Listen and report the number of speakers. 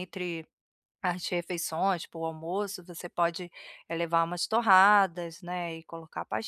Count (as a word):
one